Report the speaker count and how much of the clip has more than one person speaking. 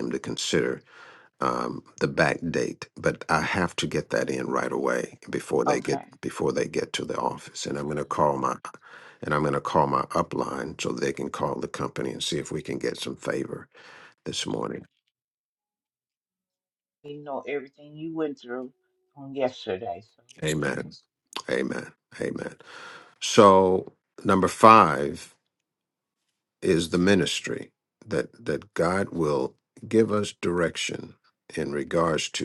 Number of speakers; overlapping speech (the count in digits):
2, about 1%